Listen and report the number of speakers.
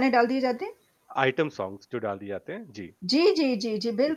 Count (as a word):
two